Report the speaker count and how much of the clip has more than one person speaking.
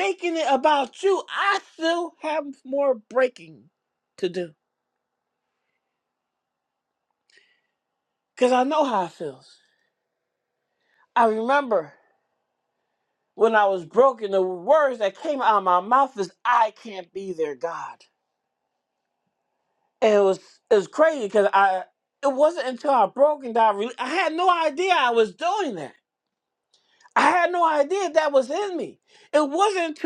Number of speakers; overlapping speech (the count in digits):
1, no overlap